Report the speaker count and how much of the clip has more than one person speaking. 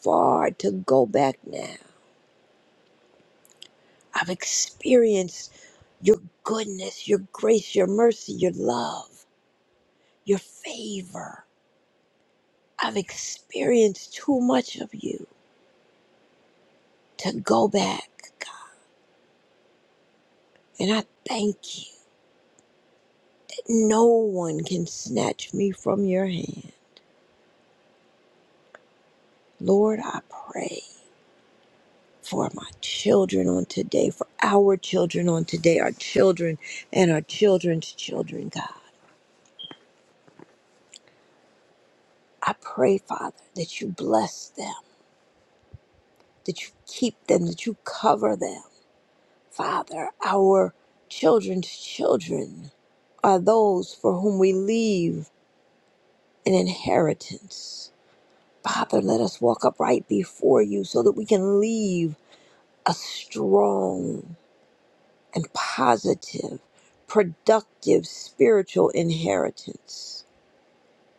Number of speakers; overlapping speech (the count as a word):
one, no overlap